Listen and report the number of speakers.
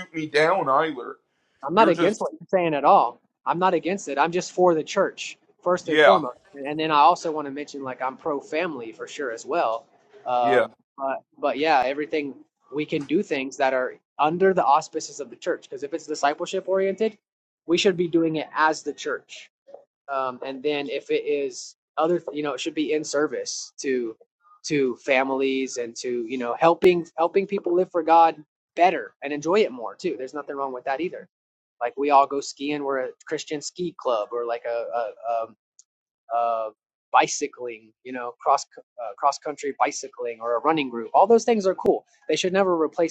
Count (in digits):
2